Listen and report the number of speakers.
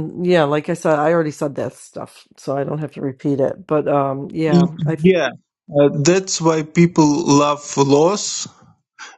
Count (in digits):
2